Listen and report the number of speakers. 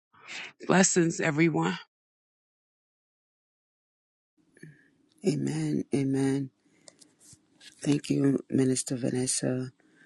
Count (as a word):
two